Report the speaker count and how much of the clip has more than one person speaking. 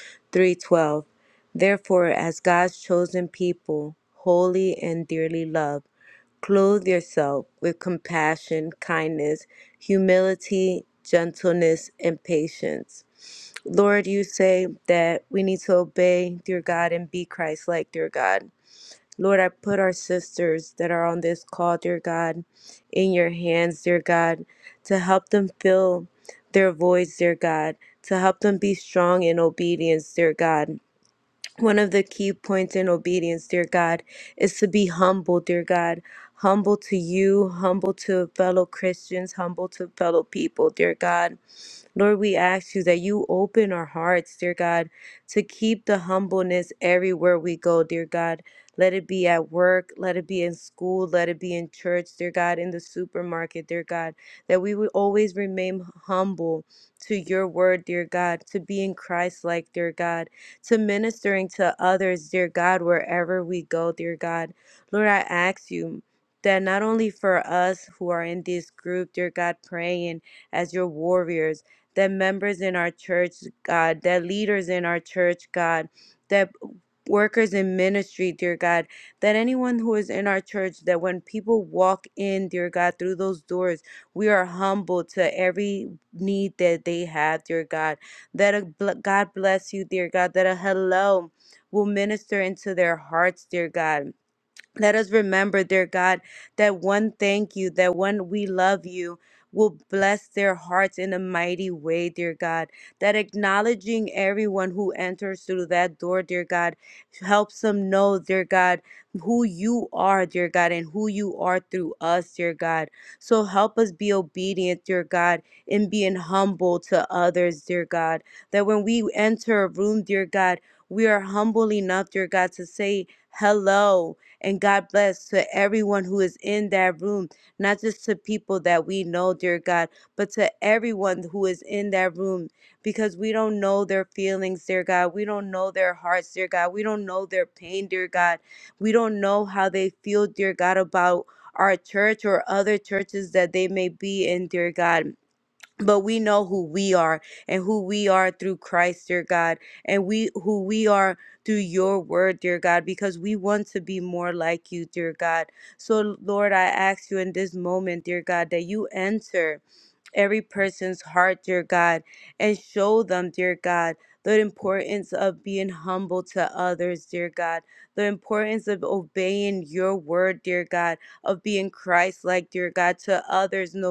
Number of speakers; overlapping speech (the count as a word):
one, no overlap